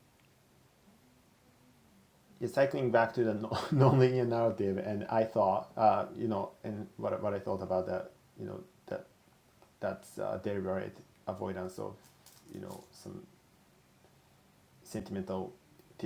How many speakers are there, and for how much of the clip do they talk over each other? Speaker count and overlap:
1, no overlap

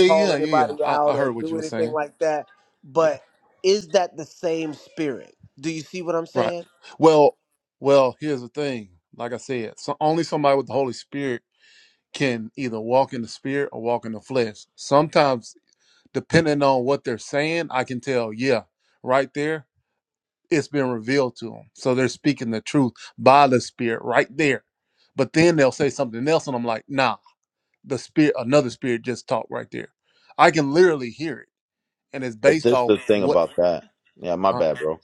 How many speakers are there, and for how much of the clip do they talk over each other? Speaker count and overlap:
3, about 9%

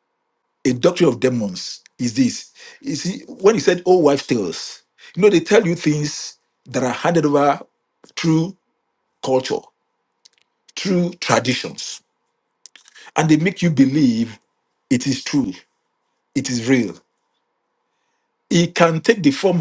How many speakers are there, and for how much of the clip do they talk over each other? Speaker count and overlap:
1, no overlap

